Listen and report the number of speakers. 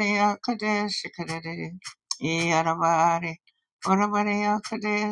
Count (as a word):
one